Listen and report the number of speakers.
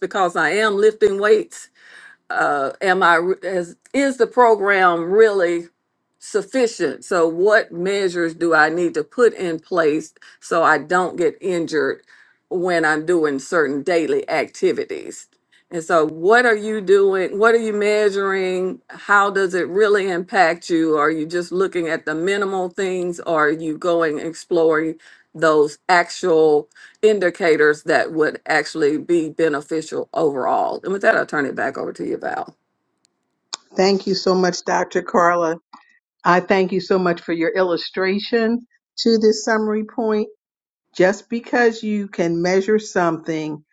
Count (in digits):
2